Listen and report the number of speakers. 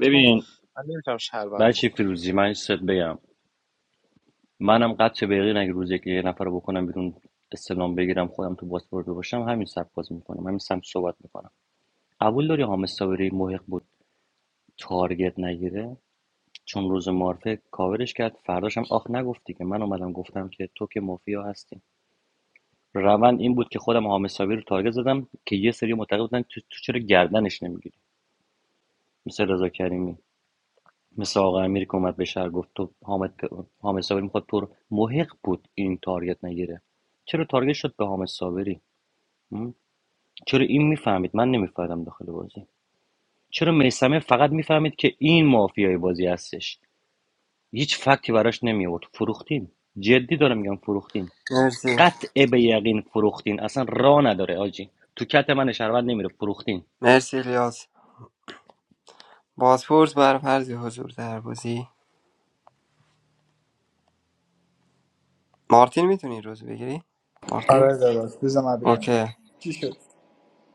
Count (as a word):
four